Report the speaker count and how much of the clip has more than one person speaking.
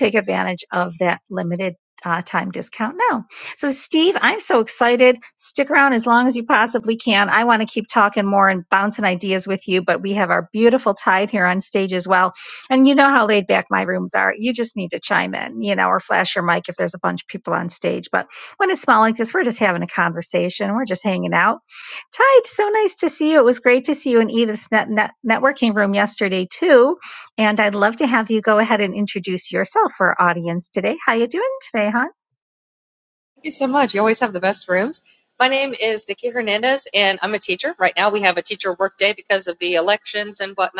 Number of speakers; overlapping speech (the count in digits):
2, no overlap